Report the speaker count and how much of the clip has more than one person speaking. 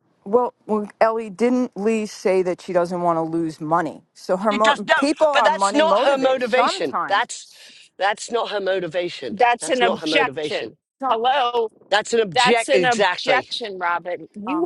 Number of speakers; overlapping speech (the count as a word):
three, about 37%